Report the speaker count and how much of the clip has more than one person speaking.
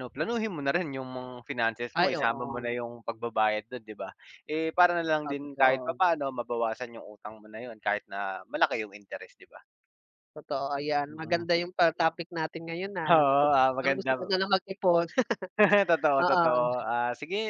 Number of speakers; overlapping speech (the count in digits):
2, about 19%